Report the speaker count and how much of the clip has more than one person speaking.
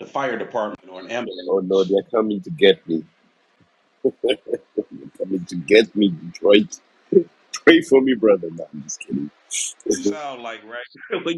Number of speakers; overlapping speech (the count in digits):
2, about 4%